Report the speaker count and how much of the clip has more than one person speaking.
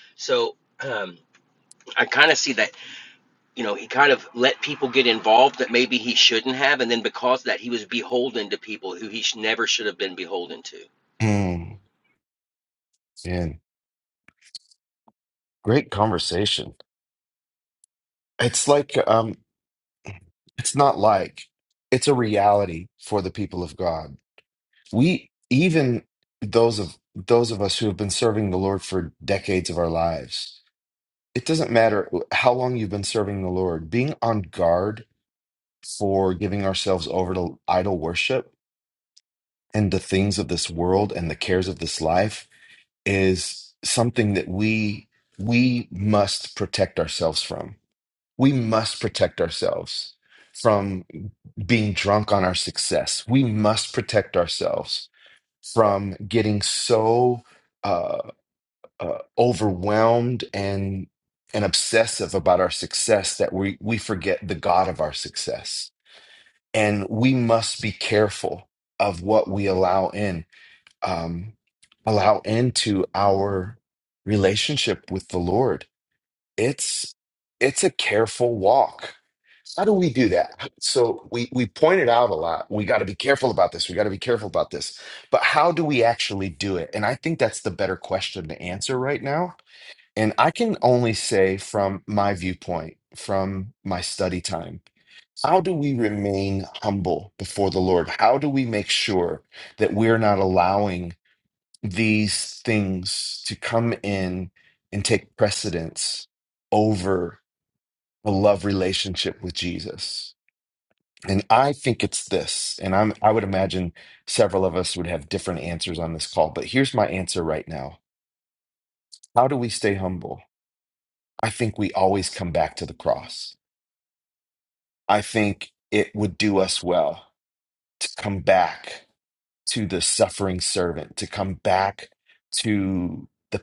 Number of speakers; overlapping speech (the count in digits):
2, no overlap